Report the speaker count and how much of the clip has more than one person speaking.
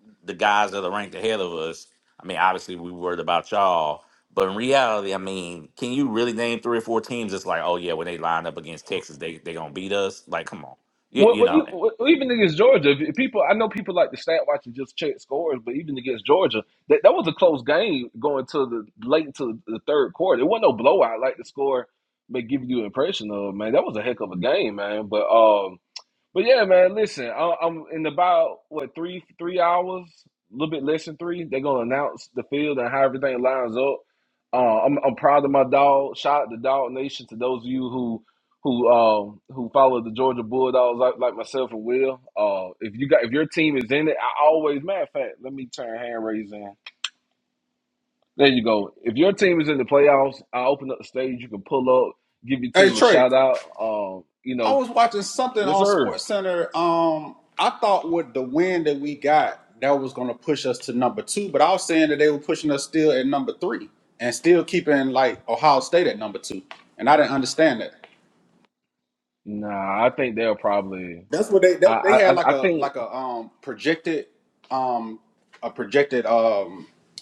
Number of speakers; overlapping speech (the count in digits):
3, about 4%